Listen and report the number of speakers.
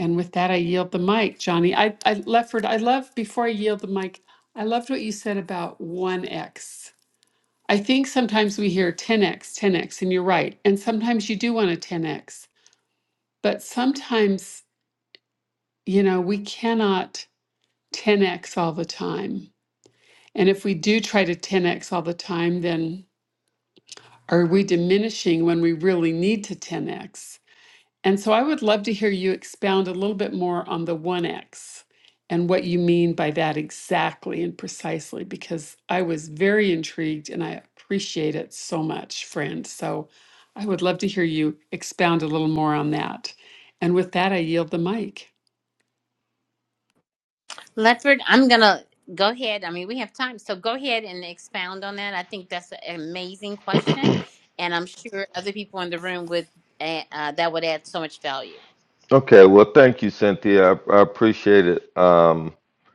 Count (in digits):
3